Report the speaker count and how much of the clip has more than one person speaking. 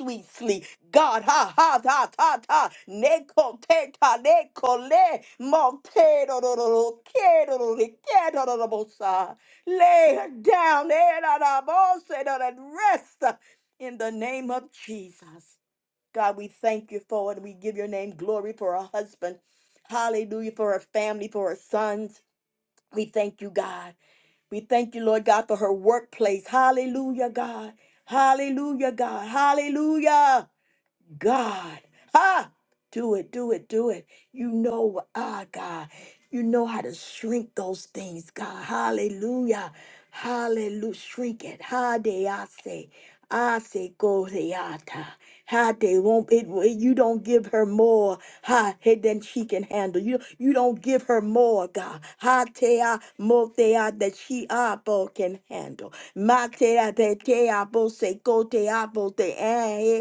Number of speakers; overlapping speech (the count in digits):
1, no overlap